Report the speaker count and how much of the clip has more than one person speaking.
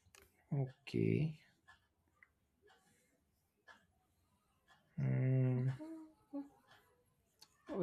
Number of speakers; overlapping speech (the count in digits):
1, no overlap